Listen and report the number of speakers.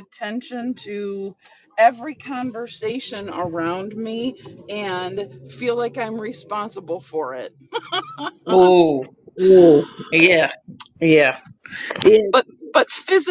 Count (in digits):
2